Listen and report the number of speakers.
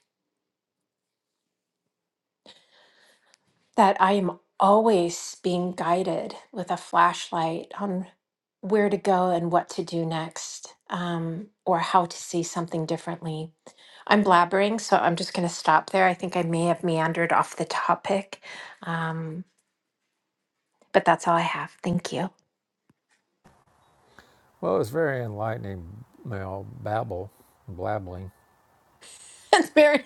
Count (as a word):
two